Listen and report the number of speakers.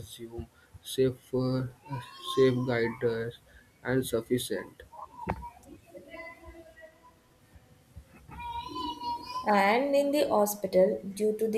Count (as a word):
two